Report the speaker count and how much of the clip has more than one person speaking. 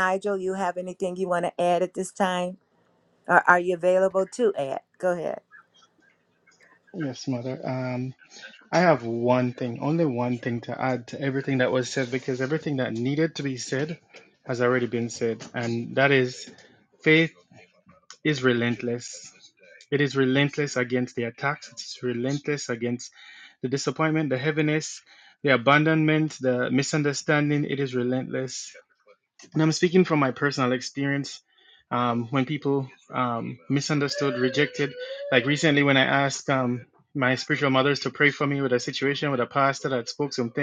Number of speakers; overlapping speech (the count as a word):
two, no overlap